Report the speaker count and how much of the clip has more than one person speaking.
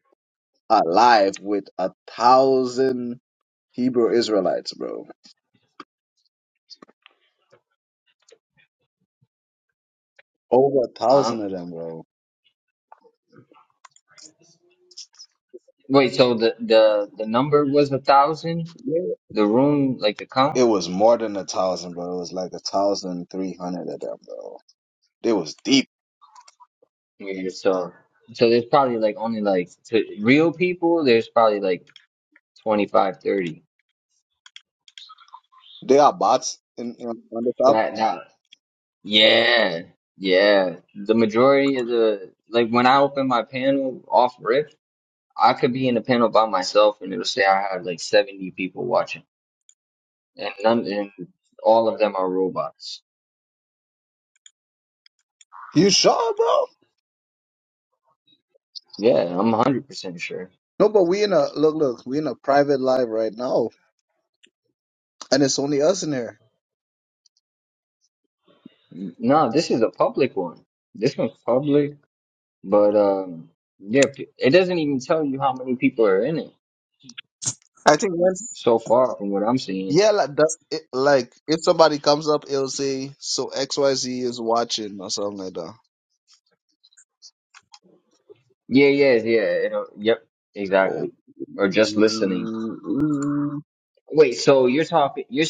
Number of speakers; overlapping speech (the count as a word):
two, about 1%